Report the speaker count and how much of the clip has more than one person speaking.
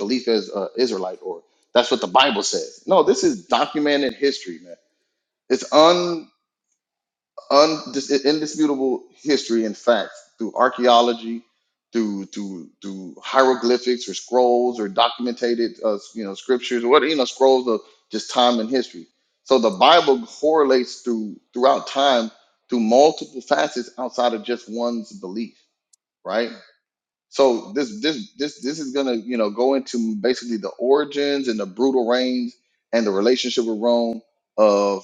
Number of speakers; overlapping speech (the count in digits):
1, no overlap